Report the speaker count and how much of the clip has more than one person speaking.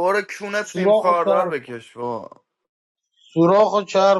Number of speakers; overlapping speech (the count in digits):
2, about 20%